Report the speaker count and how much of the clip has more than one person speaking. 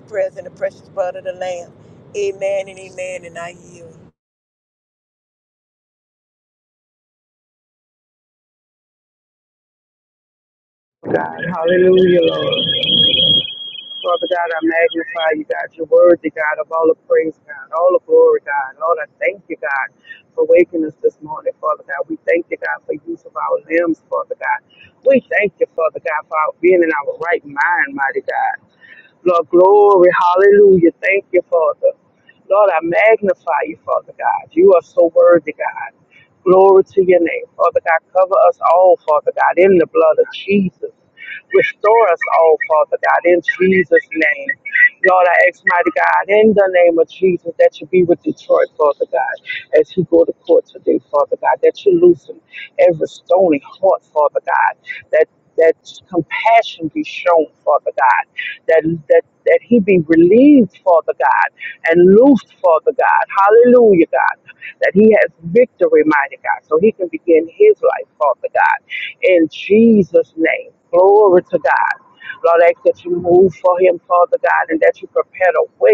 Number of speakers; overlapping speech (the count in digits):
2, no overlap